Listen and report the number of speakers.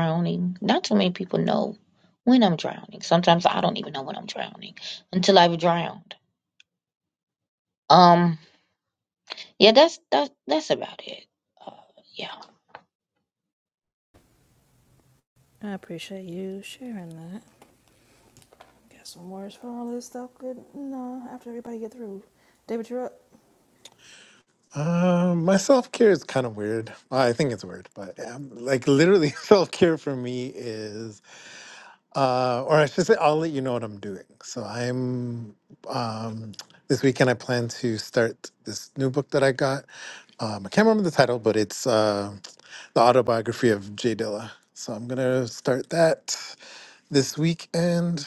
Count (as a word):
three